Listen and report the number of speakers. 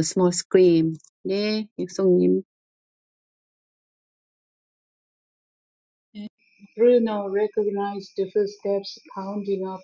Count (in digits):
2